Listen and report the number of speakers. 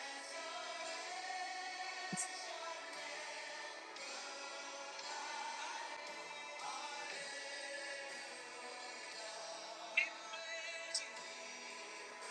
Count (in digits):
0